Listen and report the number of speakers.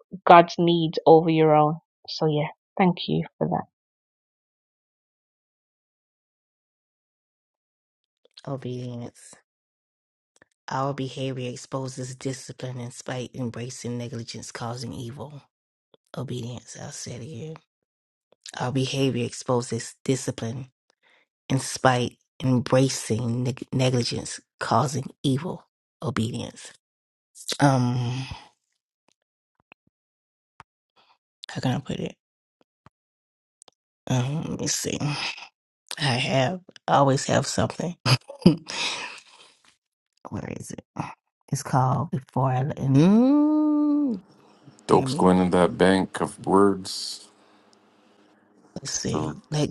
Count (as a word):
three